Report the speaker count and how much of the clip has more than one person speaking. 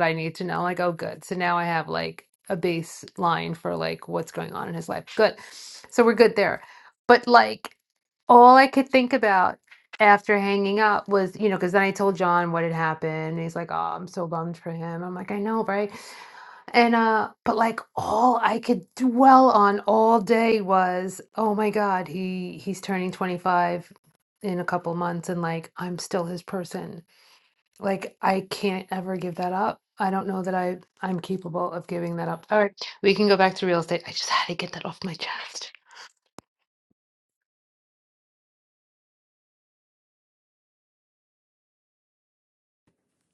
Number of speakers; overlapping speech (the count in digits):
1, no overlap